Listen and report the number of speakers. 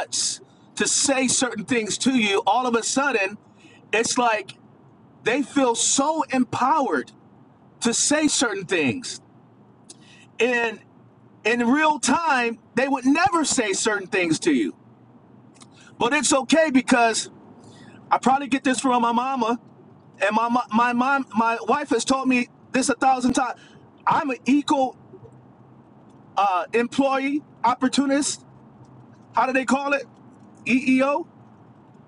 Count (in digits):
1